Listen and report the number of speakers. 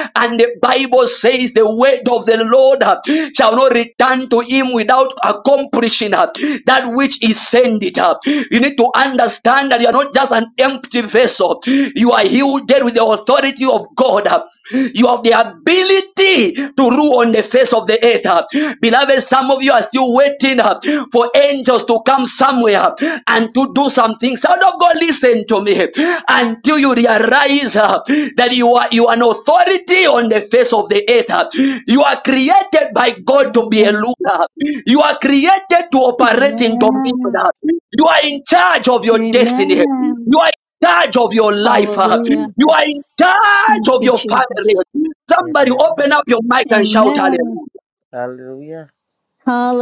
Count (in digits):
3